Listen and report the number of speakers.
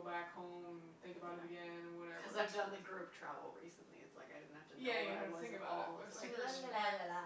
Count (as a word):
two